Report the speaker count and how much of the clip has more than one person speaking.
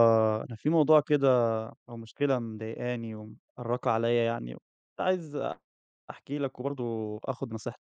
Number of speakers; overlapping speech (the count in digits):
1, no overlap